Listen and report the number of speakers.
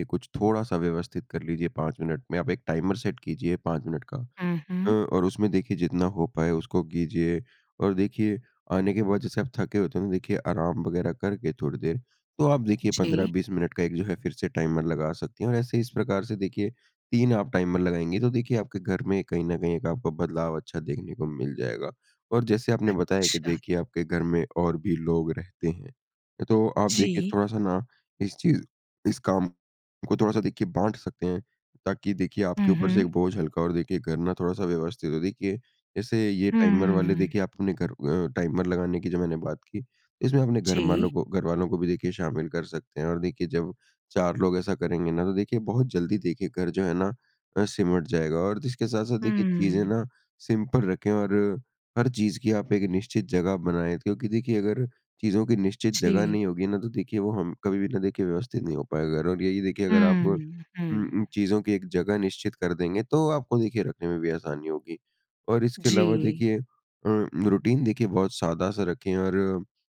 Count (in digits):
2